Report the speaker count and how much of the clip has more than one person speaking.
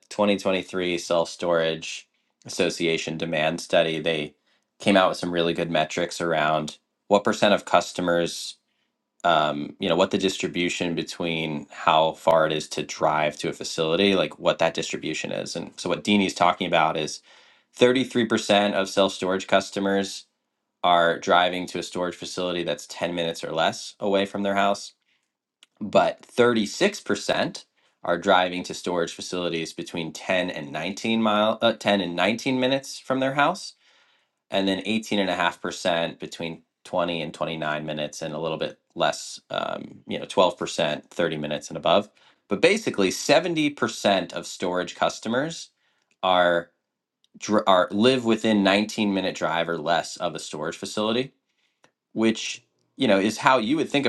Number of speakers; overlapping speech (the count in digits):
1, no overlap